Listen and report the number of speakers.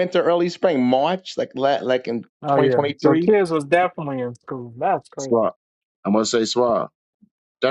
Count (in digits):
3